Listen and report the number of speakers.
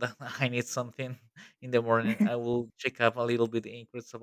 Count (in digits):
1